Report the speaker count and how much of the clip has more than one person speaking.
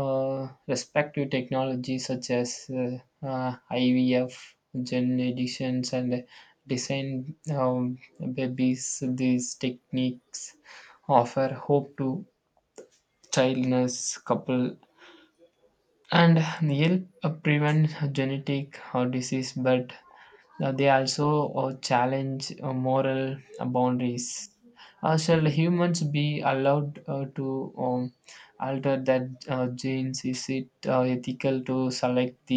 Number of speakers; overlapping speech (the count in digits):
1, no overlap